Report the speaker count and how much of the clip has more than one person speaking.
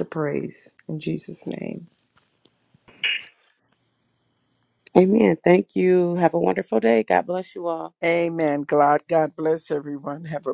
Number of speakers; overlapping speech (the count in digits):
3, no overlap